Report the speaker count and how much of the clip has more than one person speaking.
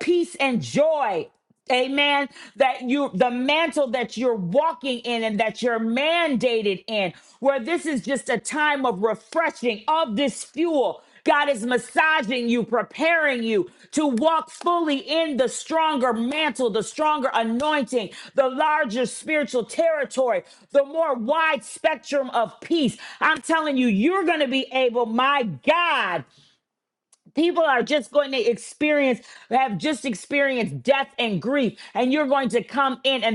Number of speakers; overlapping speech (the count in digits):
1, no overlap